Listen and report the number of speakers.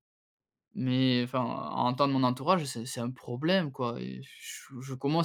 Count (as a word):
one